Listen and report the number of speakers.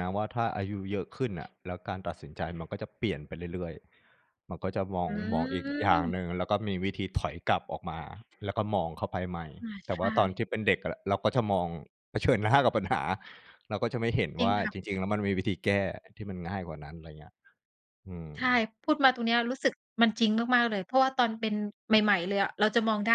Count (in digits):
2